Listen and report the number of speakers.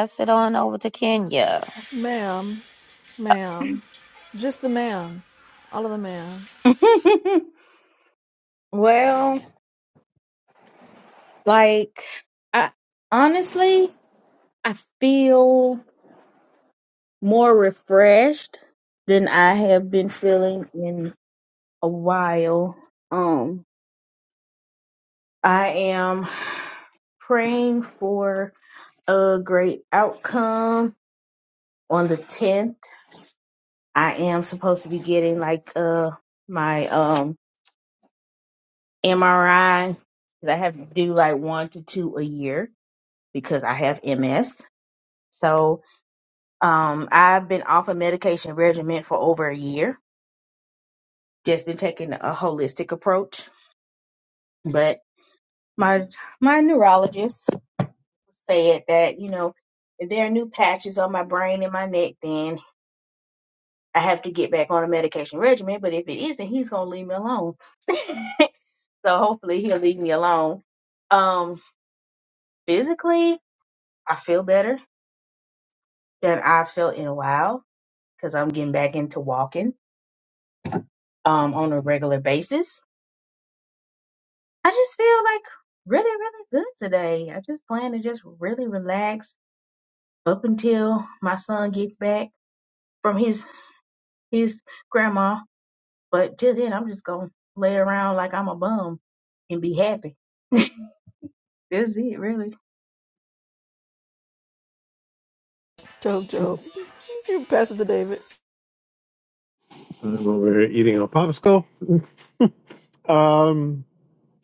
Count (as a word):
four